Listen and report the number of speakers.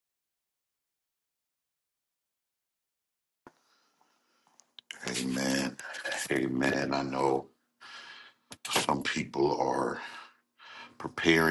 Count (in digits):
1